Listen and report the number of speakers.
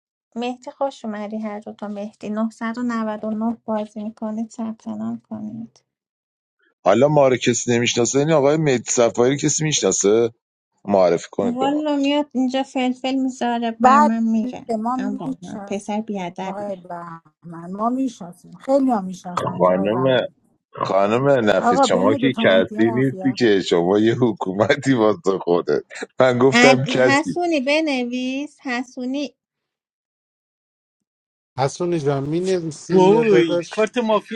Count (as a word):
five